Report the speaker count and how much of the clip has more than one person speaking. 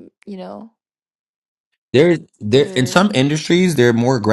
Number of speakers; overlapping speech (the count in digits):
2, about 12%